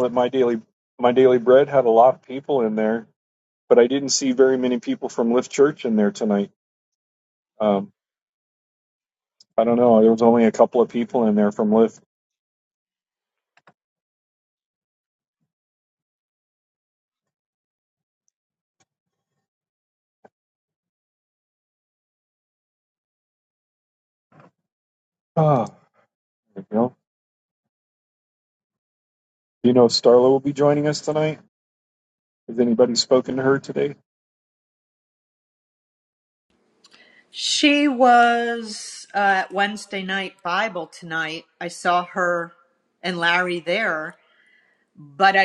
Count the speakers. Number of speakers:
two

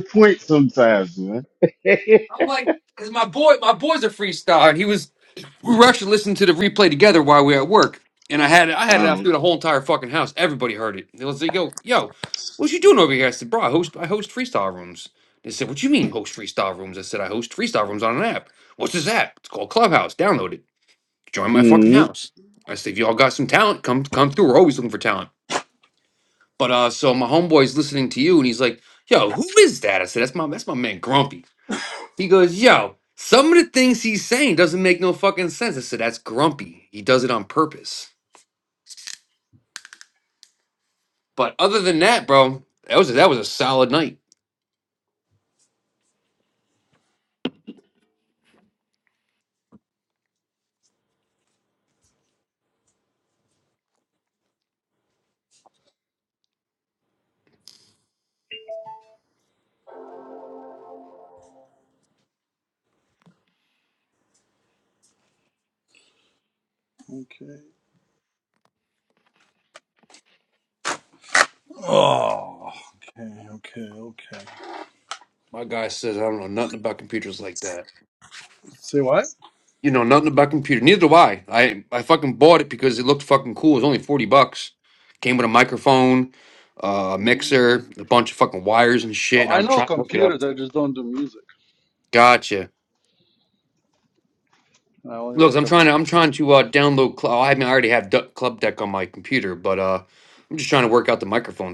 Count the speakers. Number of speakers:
three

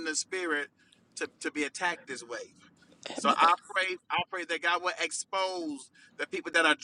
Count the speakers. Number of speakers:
one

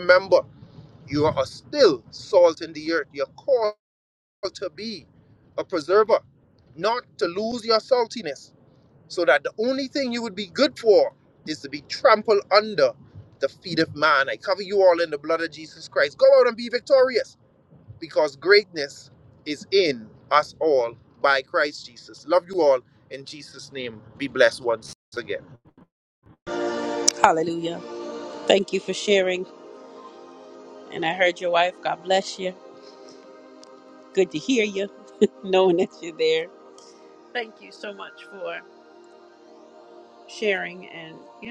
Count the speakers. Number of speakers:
two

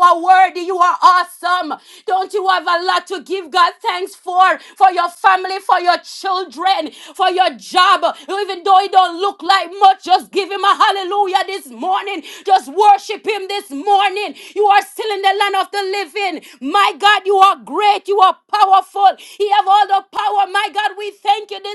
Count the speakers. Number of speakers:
one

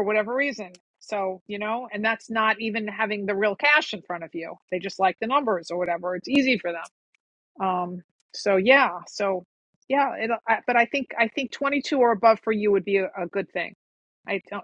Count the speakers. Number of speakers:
one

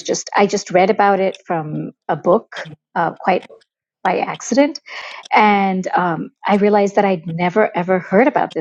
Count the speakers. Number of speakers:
one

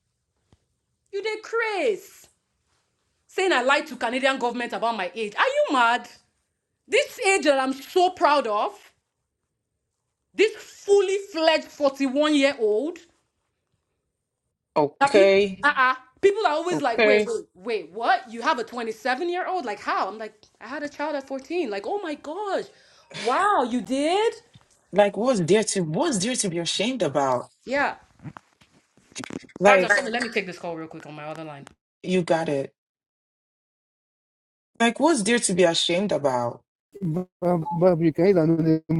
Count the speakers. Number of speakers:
three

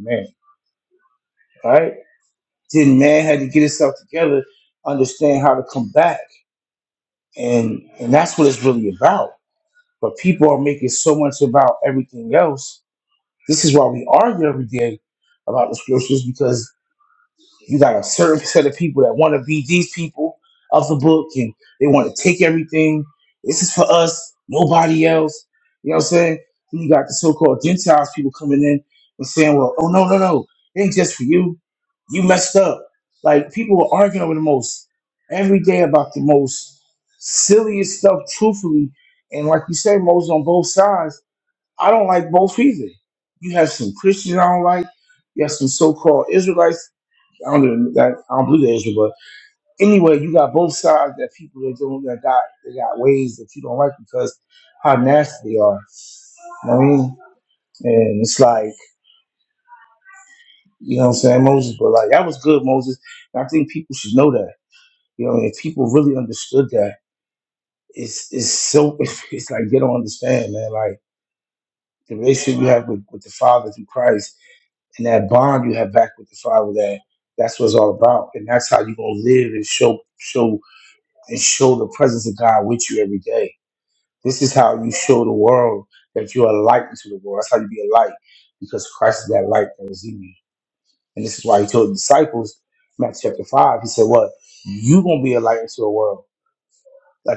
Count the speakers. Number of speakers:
one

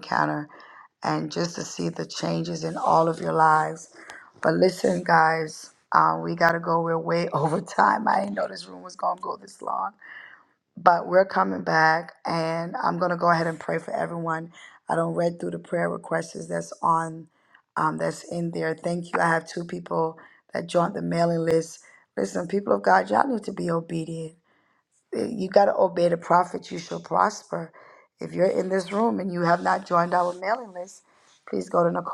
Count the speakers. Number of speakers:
one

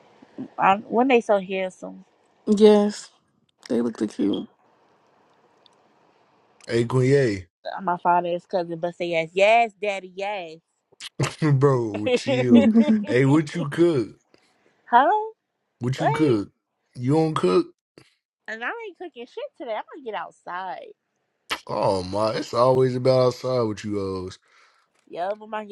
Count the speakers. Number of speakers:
three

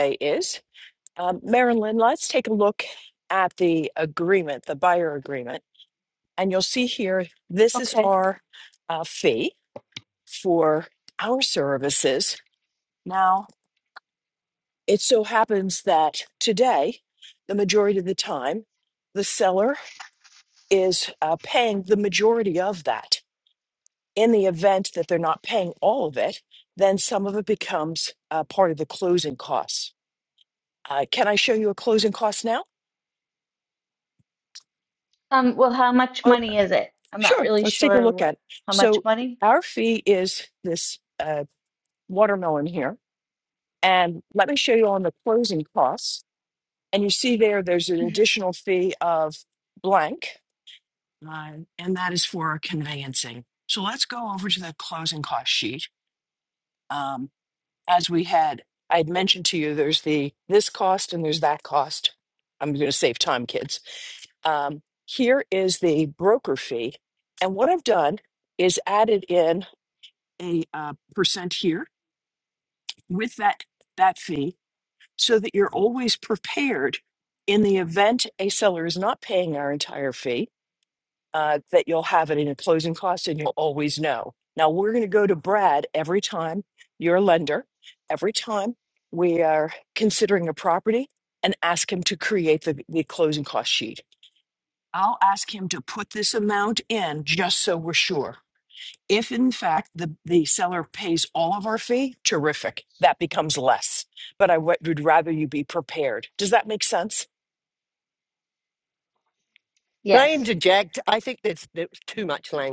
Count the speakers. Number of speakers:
three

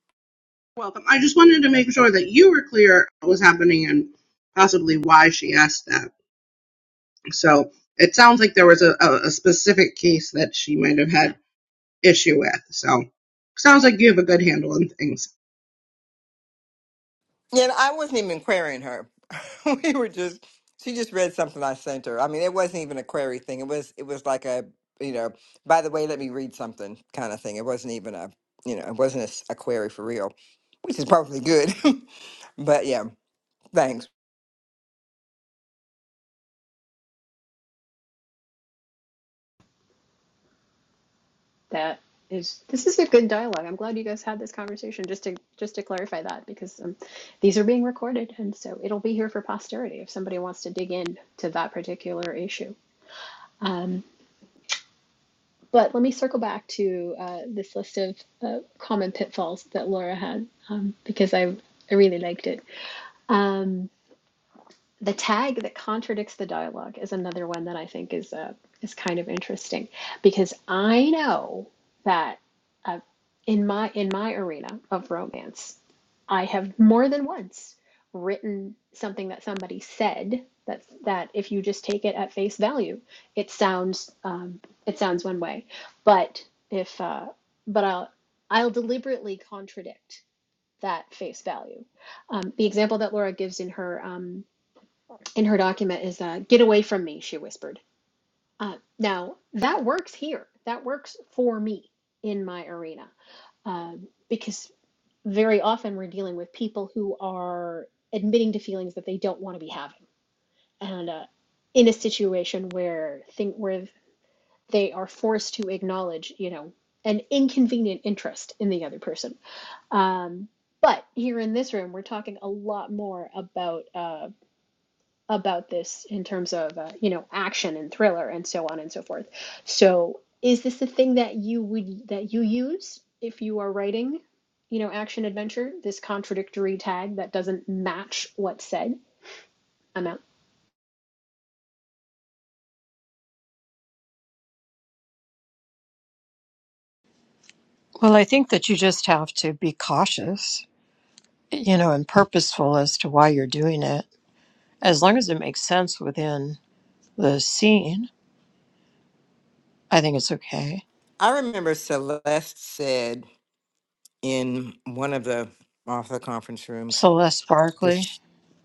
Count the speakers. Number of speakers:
four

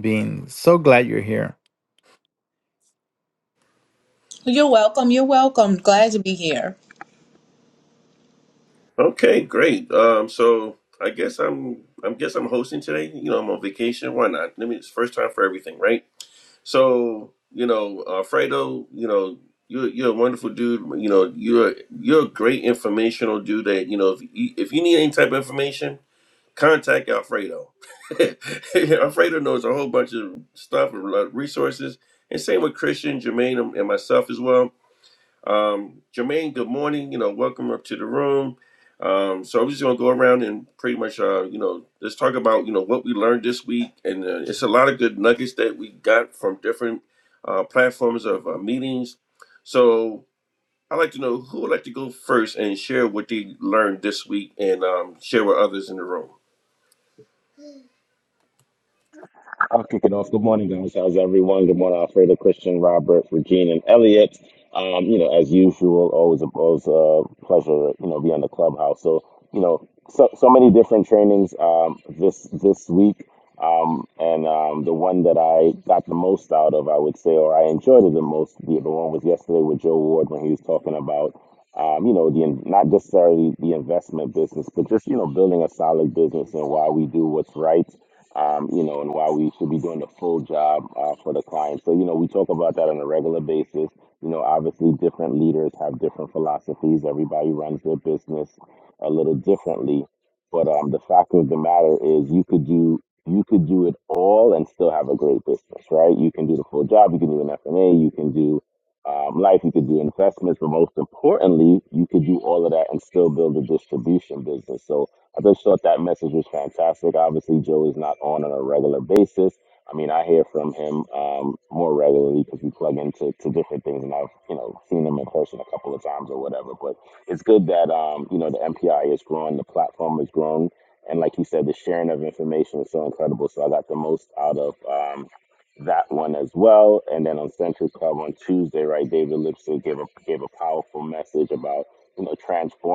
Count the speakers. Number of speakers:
four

